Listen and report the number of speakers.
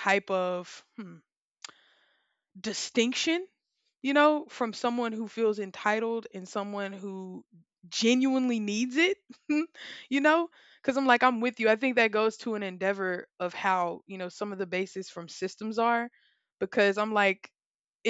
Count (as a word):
one